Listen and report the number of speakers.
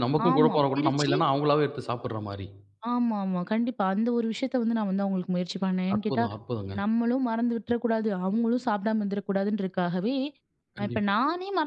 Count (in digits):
2